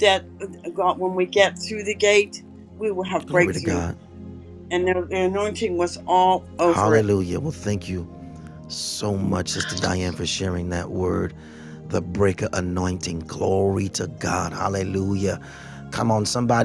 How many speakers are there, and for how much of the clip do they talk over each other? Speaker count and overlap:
2, about 5%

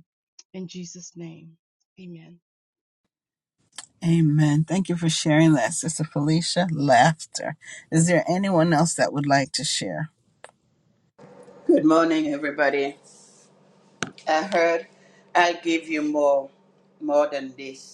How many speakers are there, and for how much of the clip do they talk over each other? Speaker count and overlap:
3, no overlap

